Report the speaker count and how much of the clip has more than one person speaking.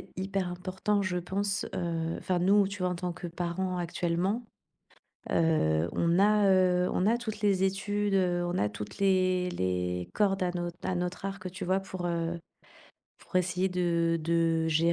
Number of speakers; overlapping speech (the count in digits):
1, no overlap